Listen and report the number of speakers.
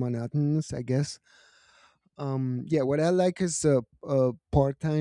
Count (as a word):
one